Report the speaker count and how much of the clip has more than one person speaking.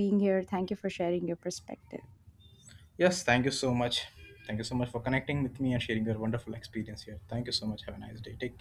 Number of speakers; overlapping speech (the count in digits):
2, no overlap